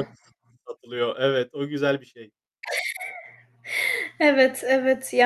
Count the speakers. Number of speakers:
2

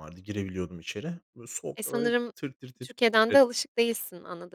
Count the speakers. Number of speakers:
2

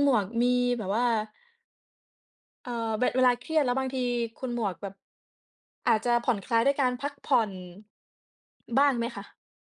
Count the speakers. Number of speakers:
1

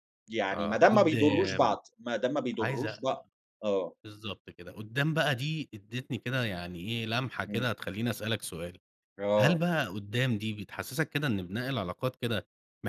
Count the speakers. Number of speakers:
2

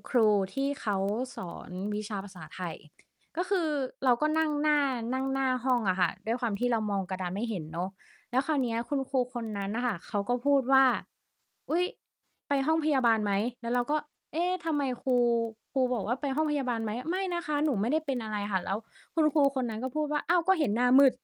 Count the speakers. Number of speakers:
1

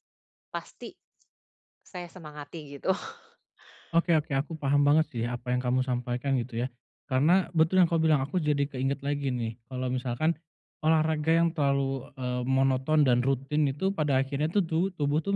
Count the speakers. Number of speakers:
2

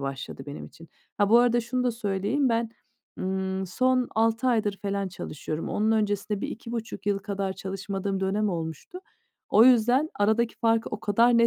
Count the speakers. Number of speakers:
1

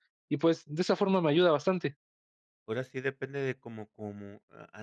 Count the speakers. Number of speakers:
2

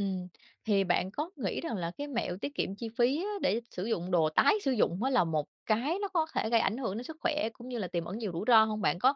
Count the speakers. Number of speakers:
1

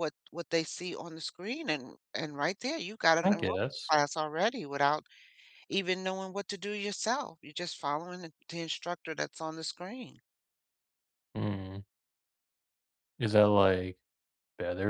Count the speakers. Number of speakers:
2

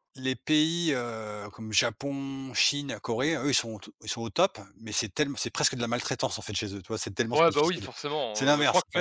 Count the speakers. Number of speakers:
2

